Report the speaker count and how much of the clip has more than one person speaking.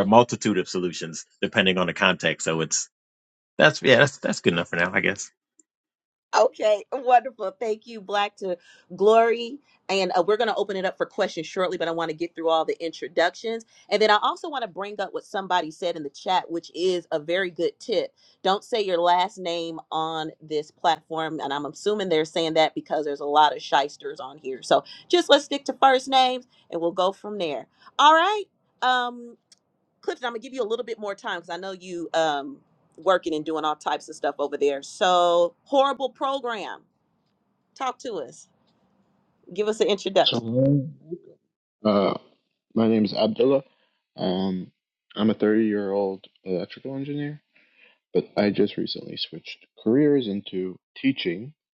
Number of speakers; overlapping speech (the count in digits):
3, under 1%